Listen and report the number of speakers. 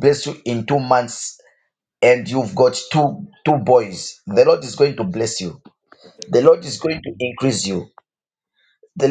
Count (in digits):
1